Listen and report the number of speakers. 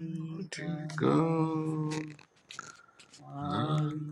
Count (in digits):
2